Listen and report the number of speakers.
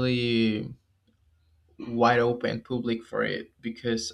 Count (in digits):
1